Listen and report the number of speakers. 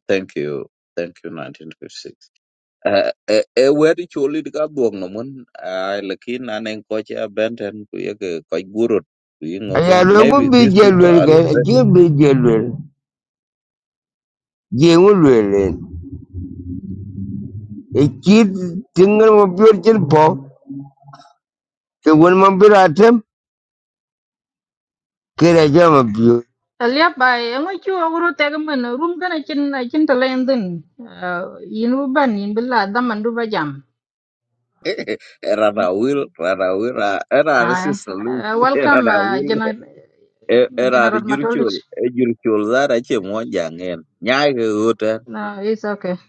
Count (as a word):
three